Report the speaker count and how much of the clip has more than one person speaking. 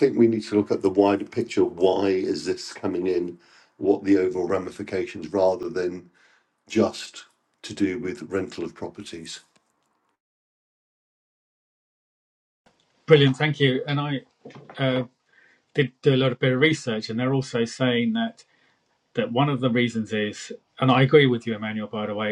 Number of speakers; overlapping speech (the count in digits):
2, no overlap